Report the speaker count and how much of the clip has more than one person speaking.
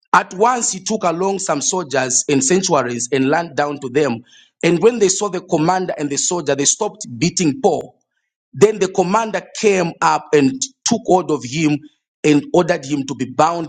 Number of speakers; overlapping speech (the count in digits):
1, no overlap